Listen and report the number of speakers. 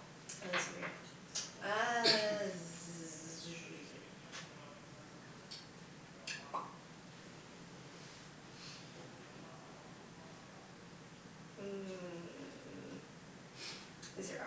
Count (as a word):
one